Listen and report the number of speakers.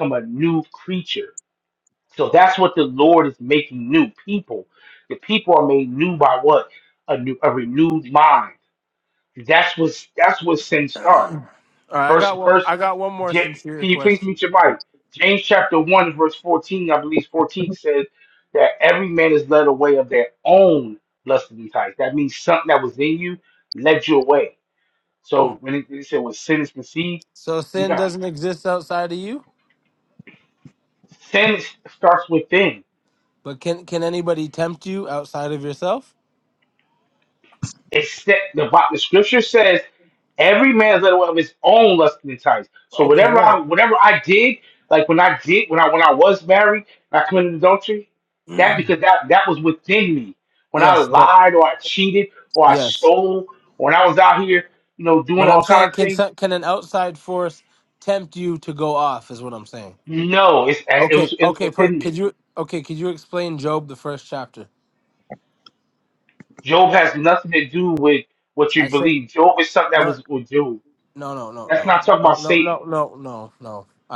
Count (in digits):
2